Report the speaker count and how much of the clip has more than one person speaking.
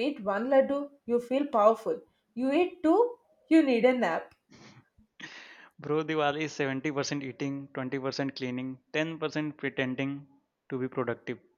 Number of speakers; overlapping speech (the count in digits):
2, no overlap